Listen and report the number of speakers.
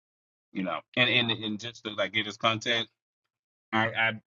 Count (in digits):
1